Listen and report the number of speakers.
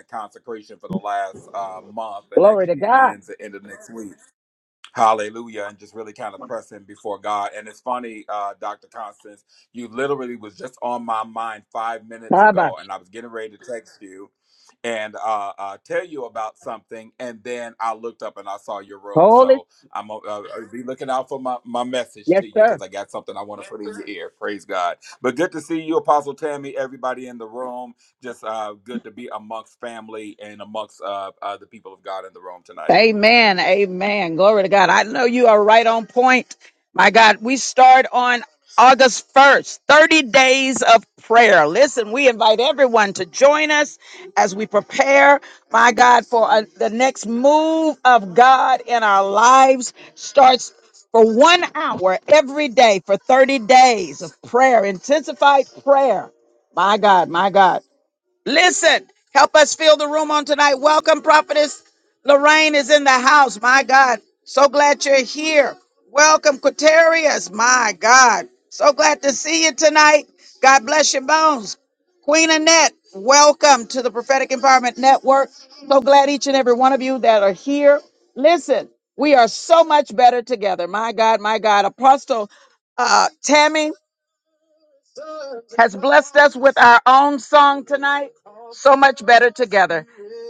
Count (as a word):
two